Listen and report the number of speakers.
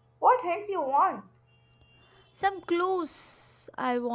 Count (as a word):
two